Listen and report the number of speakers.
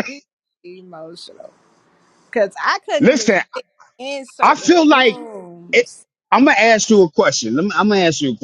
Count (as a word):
two